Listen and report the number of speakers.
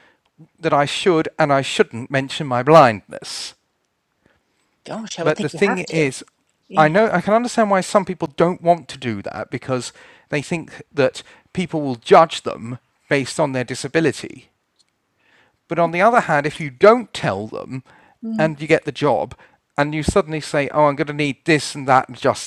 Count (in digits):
2